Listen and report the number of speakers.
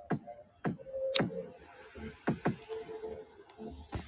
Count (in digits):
0